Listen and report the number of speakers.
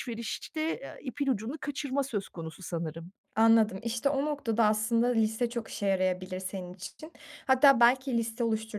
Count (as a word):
two